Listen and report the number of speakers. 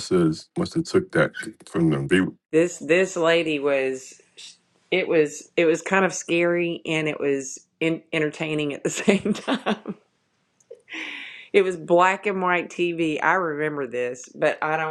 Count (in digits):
2